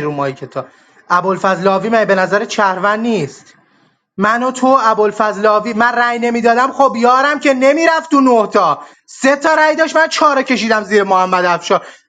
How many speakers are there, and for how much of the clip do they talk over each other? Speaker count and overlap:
1, no overlap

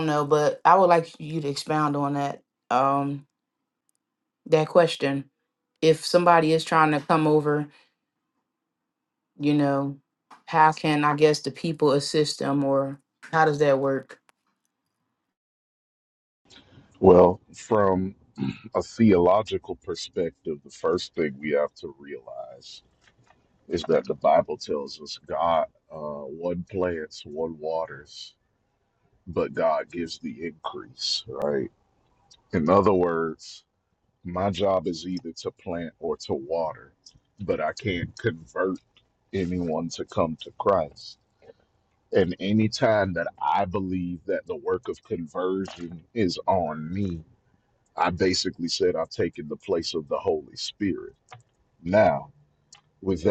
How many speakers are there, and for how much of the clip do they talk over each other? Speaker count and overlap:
2, no overlap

